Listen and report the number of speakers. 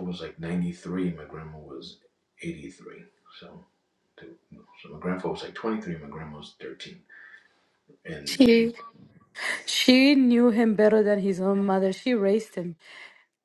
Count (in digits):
2